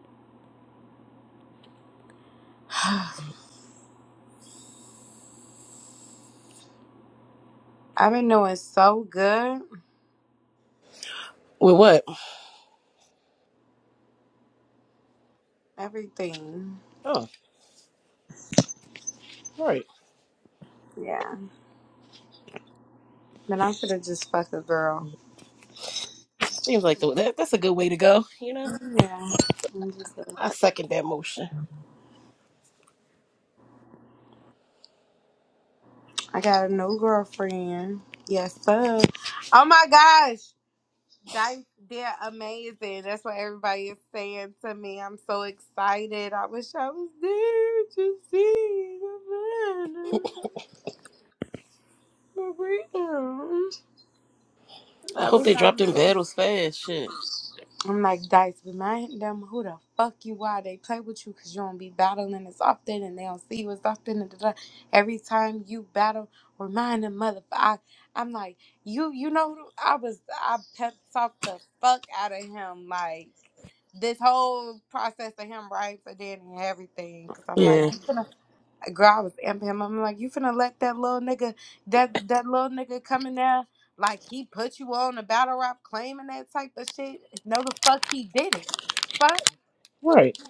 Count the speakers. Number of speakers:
2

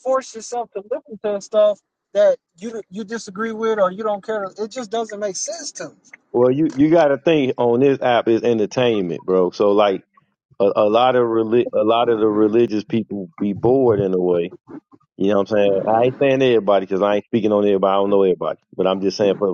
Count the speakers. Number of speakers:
2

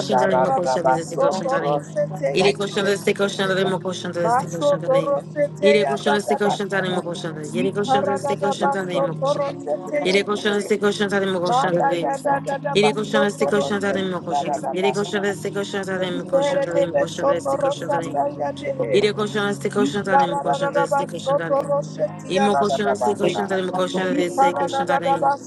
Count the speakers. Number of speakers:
2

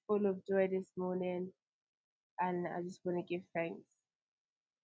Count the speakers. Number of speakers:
1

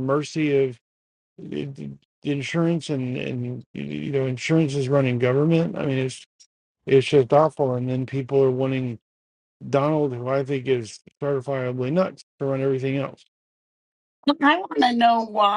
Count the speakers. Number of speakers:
2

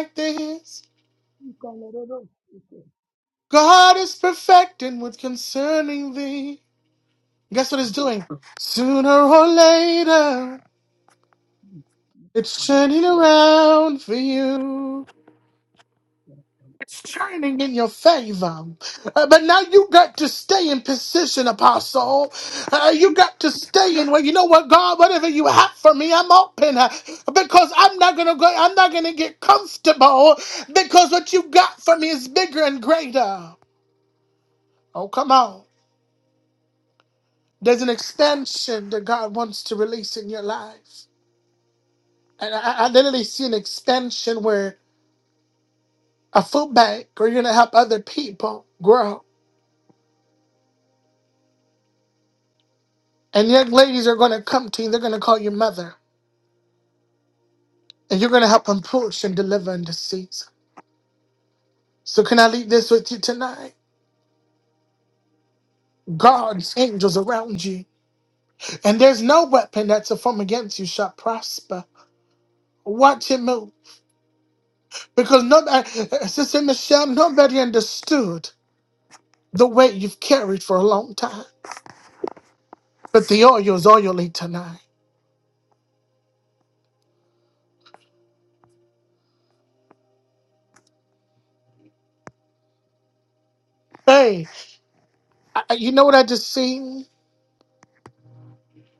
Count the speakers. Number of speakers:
2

